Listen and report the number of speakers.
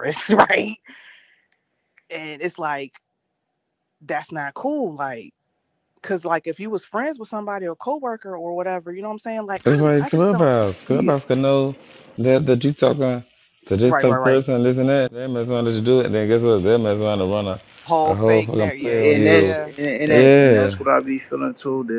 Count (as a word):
three